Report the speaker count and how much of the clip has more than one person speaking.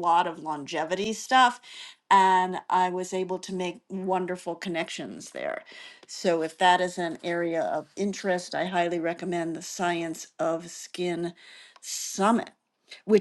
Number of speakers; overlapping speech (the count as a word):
one, no overlap